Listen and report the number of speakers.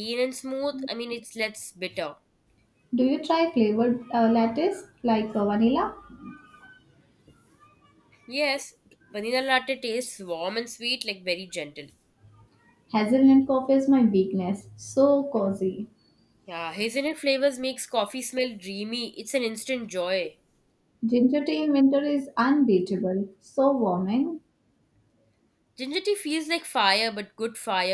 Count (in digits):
2